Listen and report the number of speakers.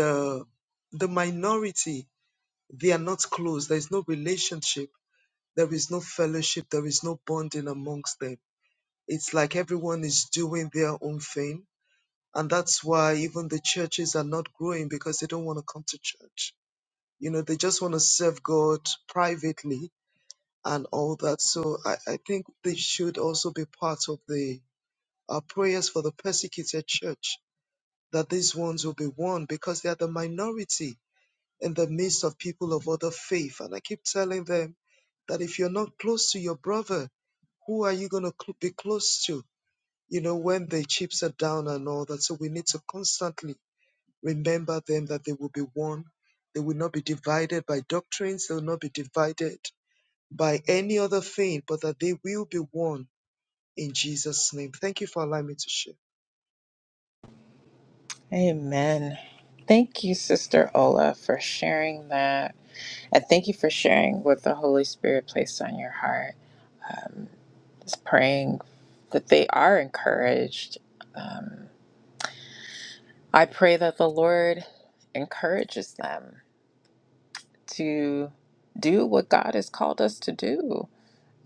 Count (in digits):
2